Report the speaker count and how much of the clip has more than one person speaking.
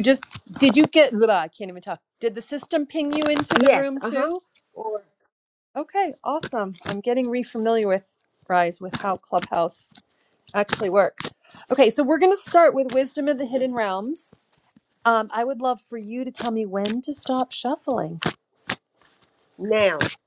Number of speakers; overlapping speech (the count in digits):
2, about 4%